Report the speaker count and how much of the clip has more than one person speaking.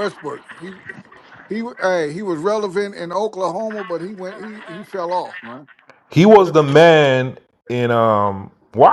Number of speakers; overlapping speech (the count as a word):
two, no overlap